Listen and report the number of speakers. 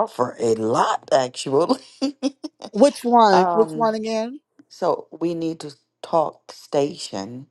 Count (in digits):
2